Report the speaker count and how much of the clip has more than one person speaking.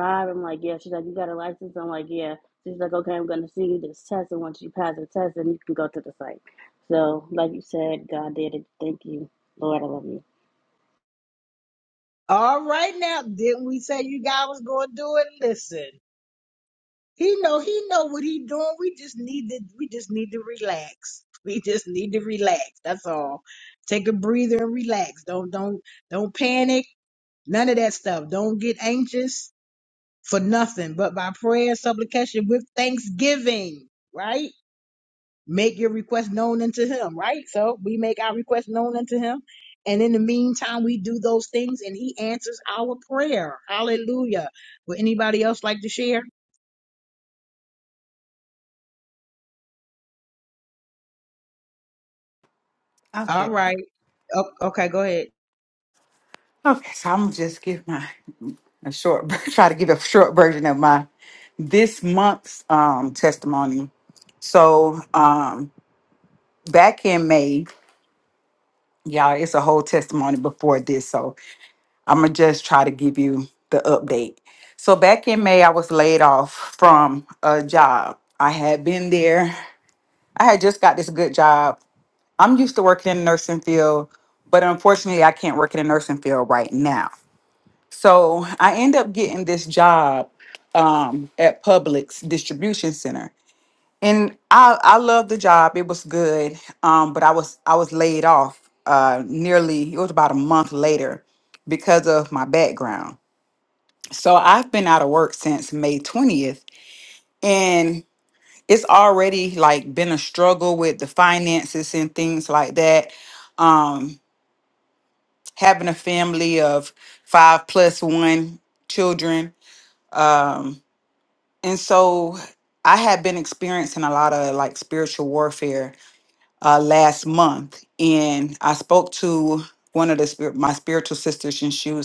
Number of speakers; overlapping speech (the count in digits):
3, under 1%